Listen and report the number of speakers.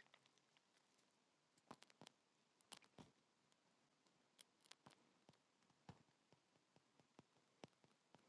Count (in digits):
0